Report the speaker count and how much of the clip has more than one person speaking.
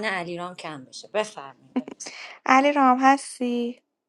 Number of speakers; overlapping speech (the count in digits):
2, no overlap